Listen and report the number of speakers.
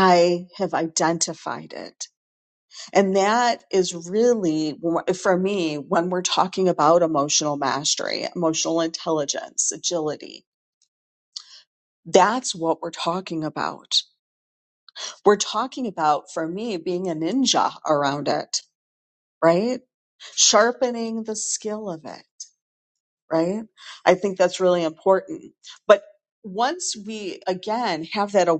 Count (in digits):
1